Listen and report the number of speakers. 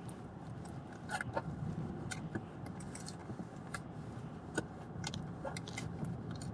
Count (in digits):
0